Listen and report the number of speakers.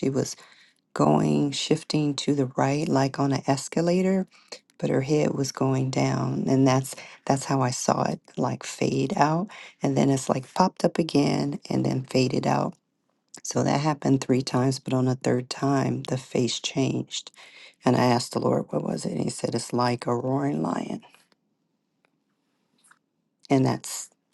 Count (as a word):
one